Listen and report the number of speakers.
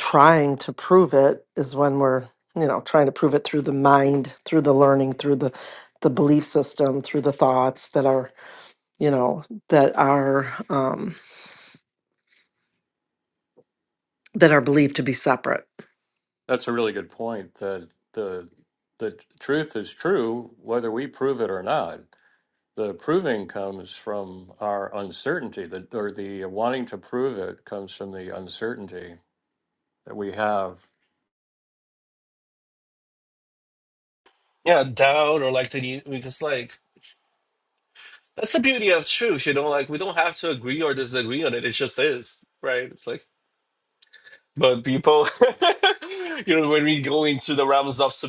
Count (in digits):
3